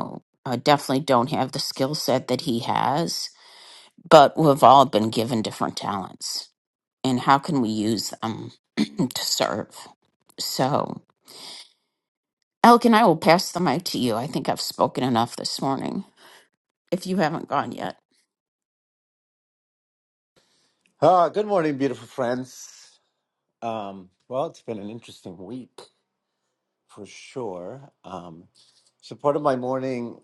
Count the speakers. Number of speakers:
two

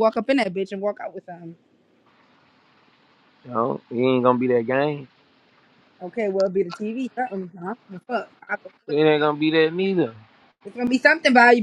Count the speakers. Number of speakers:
two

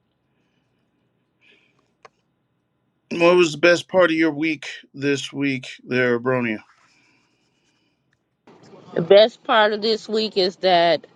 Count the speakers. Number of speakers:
two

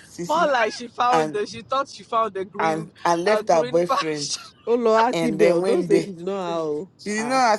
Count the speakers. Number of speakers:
three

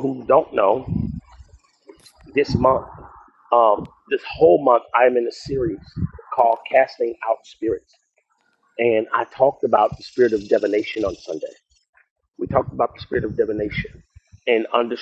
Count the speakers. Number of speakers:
one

